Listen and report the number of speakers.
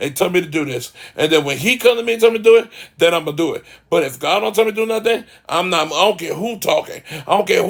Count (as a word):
one